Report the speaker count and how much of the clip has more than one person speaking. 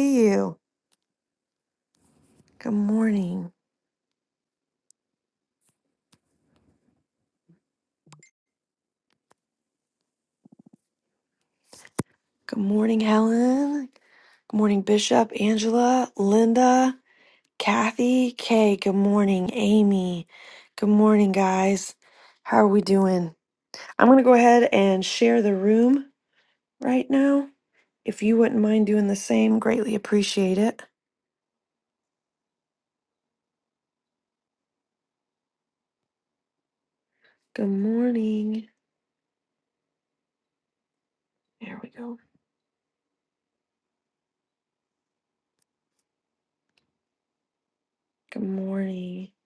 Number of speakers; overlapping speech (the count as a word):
one, no overlap